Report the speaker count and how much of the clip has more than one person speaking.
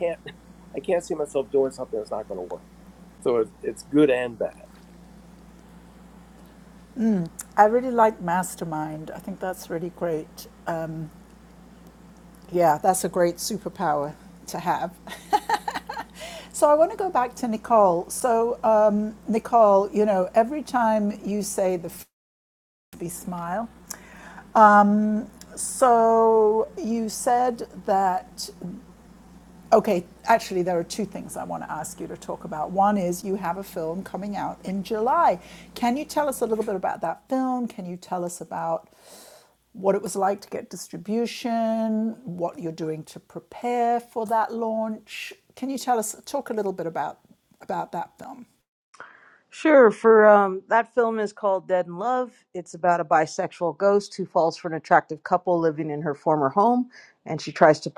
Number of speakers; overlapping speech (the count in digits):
3, no overlap